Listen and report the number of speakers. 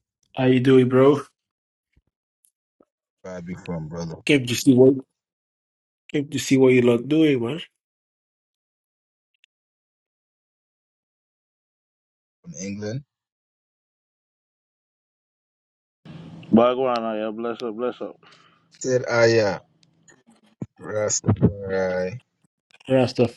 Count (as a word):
three